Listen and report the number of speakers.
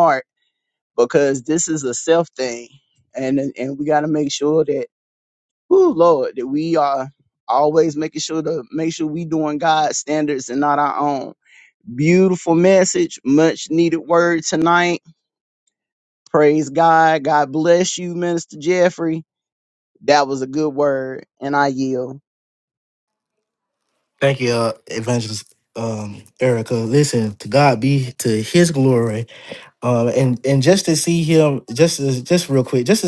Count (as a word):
two